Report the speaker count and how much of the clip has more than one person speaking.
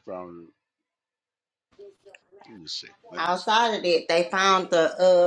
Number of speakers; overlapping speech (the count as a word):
two, about 6%